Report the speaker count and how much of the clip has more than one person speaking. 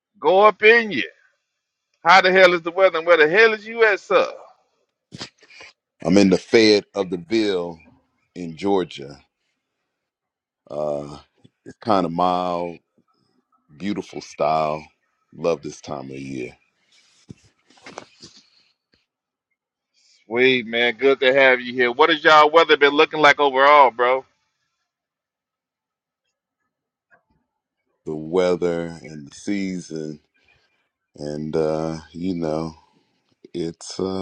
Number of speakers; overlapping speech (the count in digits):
2, no overlap